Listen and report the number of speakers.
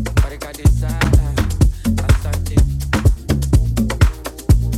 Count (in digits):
0